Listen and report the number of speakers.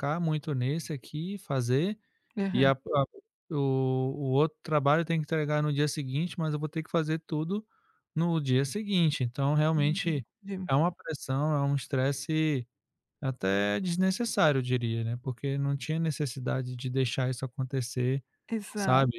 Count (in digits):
2